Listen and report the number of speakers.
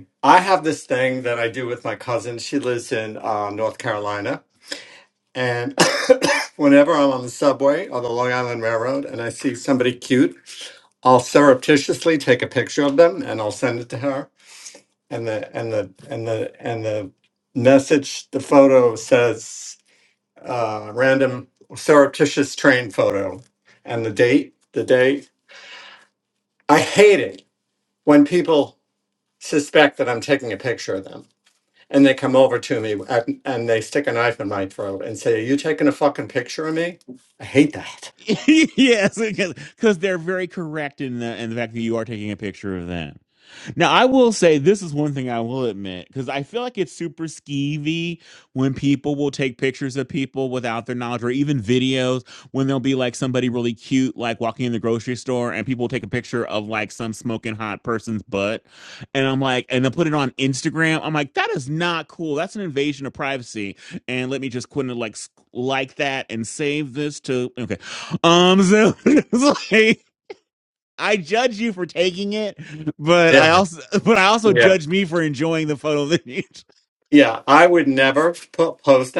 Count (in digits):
2